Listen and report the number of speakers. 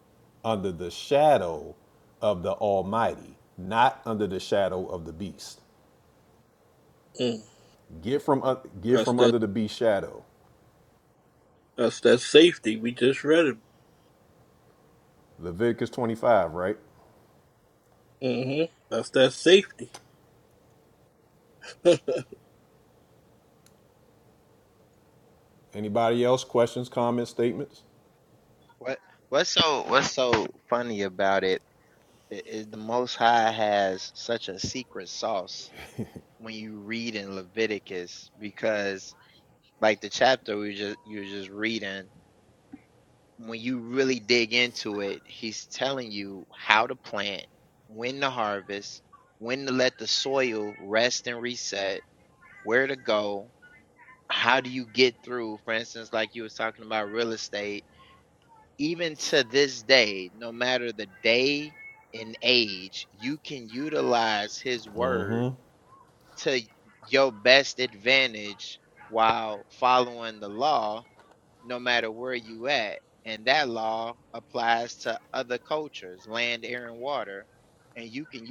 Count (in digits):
3